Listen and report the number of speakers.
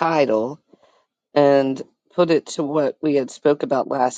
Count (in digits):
1